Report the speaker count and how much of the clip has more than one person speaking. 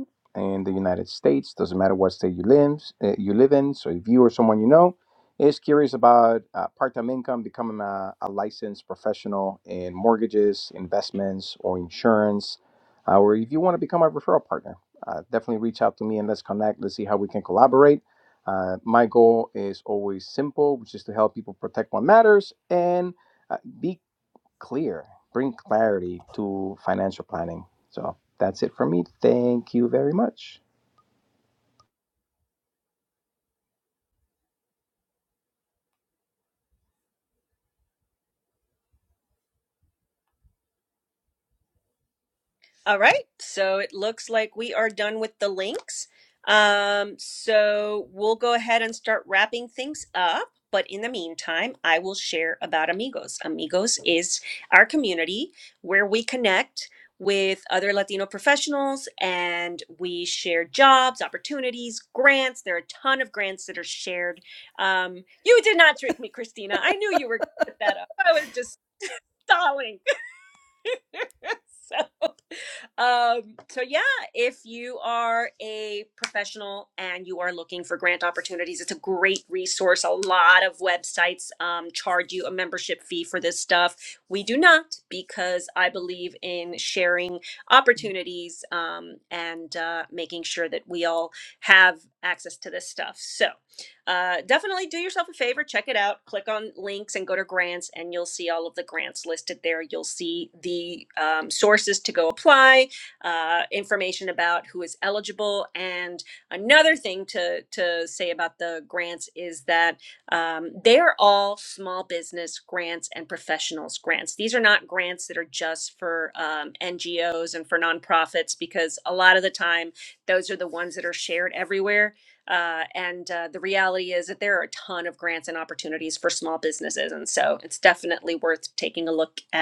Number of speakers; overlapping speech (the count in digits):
2, no overlap